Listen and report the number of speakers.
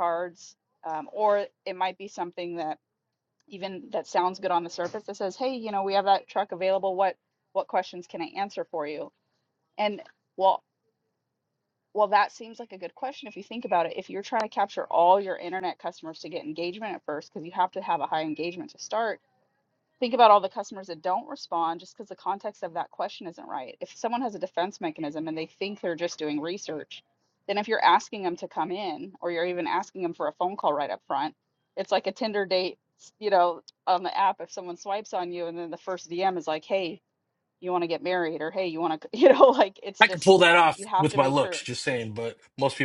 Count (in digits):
2